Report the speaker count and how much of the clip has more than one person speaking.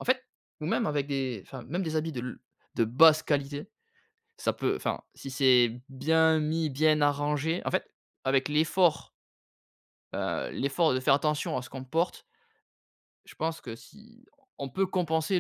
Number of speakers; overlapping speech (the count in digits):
1, no overlap